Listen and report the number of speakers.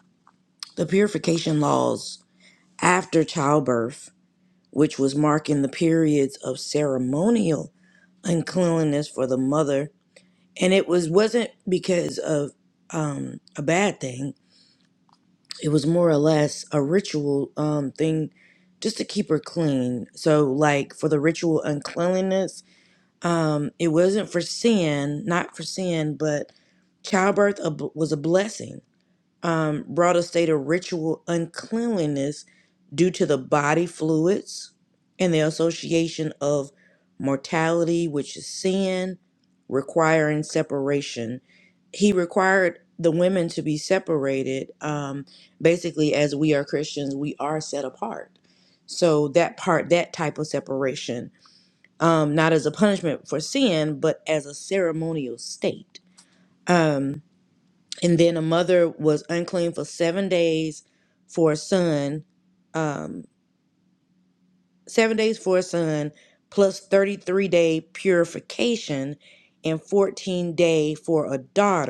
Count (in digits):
1